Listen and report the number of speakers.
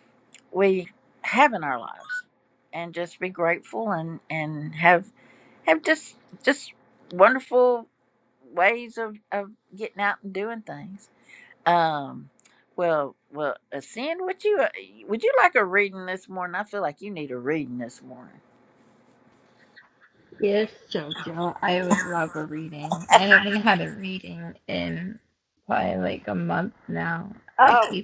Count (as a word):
two